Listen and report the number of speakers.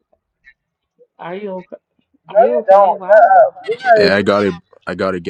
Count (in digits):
3